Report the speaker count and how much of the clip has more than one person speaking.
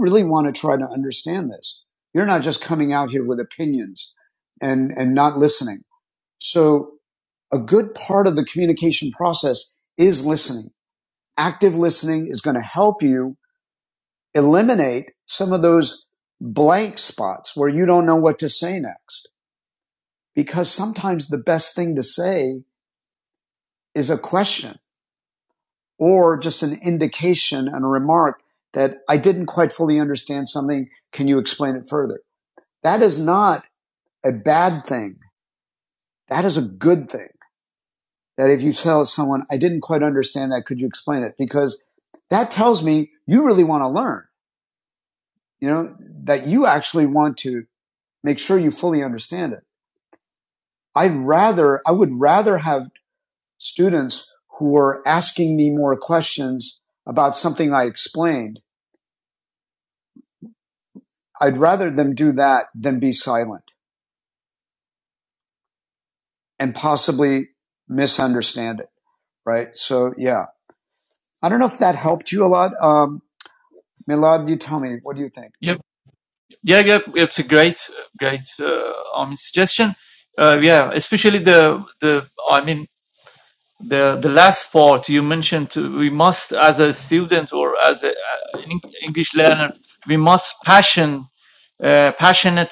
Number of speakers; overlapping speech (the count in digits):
2, no overlap